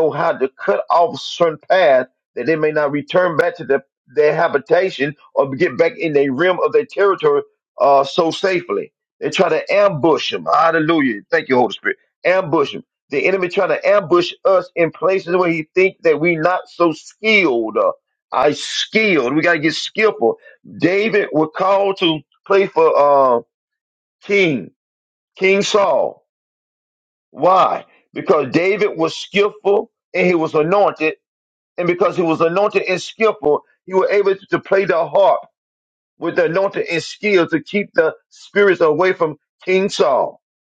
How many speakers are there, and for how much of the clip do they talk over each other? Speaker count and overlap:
1, no overlap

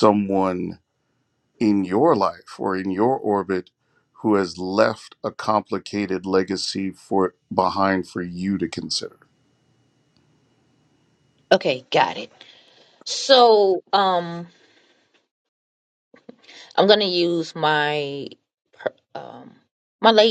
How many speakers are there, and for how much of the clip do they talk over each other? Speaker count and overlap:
2, no overlap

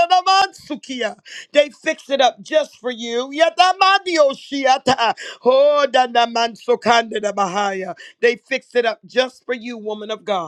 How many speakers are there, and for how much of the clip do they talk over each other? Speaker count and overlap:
1, no overlap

